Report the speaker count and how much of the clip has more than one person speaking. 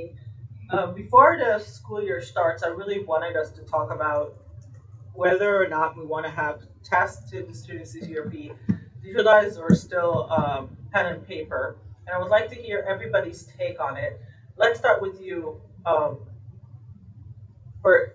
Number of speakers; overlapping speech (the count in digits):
1, no overlap